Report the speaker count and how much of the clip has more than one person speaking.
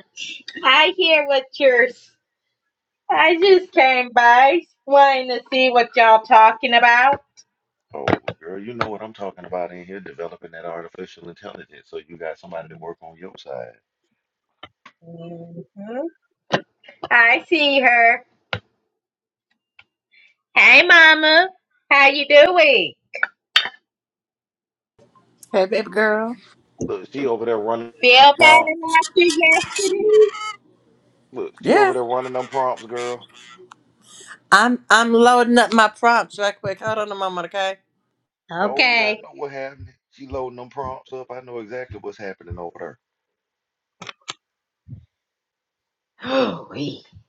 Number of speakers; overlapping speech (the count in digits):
3, about 3%